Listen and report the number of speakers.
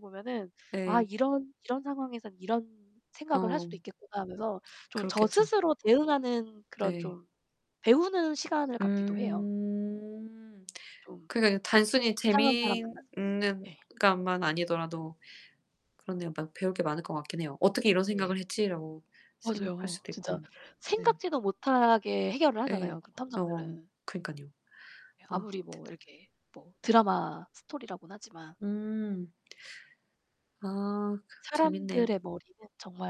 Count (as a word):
two